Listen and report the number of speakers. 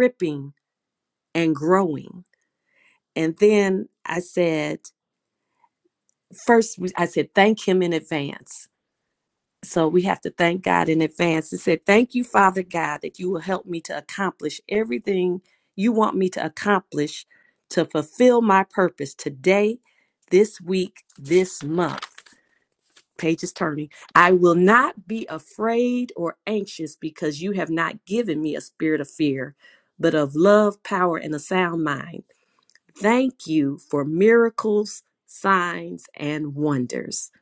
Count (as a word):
one